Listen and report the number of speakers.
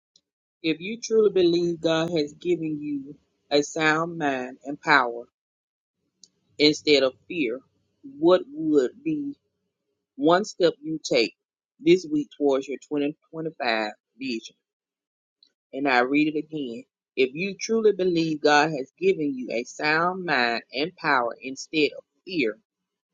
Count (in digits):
1